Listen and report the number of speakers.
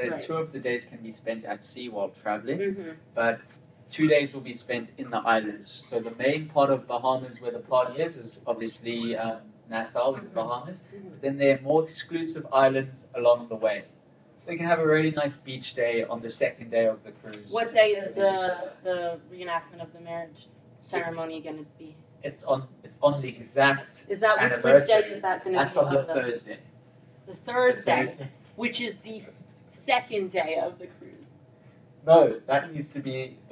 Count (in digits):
2